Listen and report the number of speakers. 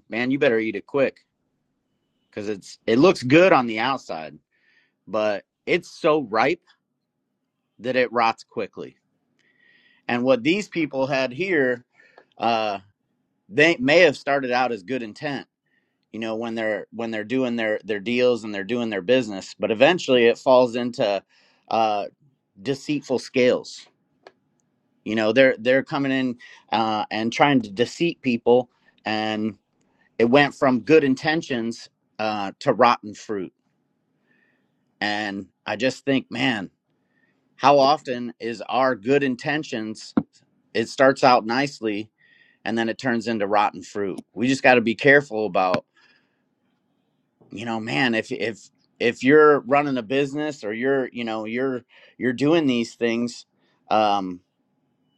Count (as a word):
one